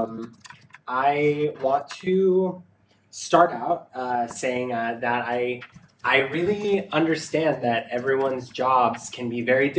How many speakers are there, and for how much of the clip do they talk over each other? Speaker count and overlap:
1, no overlap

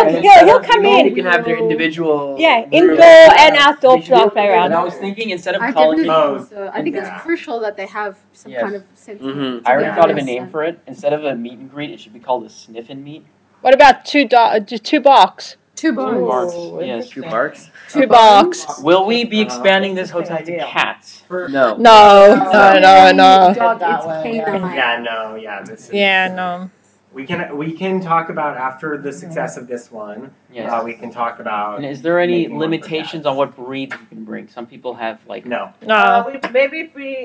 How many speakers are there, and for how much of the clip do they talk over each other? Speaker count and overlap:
6, about 48%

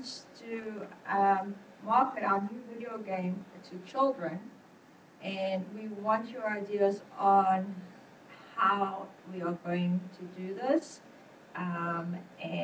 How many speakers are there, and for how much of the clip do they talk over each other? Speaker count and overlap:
1, no overlap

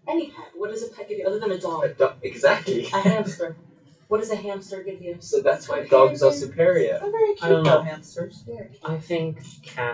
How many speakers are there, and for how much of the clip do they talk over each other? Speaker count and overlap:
4, about 25%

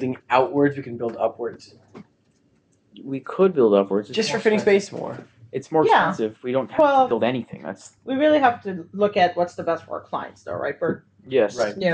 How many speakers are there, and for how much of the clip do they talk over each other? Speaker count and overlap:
3, about 12%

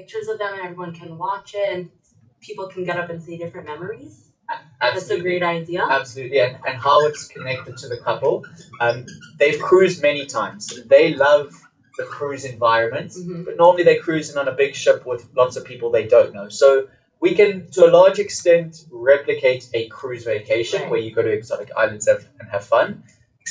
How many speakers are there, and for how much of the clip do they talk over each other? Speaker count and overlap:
2, about 5%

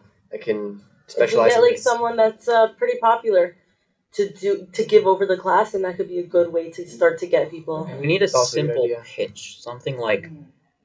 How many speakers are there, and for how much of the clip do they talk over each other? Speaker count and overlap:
3, about 22%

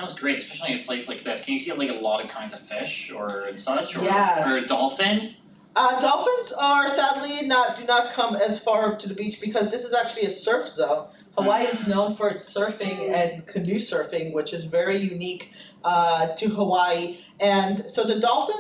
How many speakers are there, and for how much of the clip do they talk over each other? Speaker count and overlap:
2, about 6%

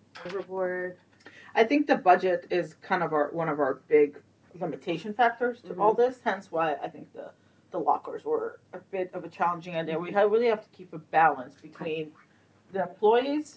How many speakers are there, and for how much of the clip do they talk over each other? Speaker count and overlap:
2, about 7%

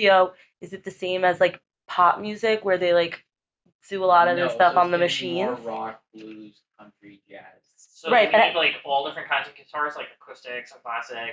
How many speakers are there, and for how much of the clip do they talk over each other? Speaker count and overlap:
3, about 20%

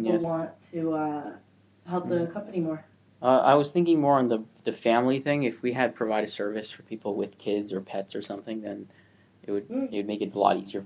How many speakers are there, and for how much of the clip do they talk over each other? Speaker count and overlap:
2, about 4%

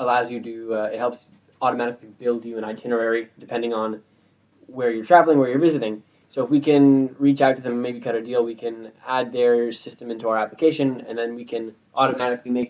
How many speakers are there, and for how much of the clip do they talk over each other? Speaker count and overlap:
1, no overlap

